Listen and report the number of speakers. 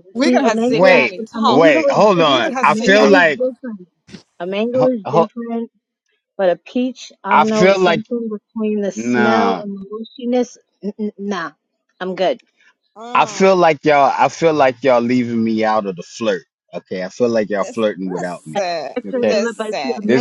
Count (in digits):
3